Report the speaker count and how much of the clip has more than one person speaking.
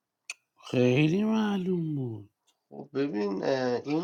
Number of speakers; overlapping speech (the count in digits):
2, no overlap